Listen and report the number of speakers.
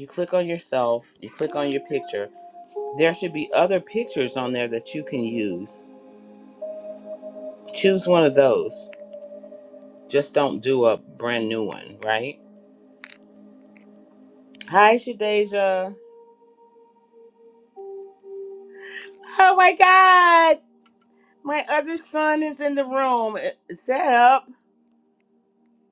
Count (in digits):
1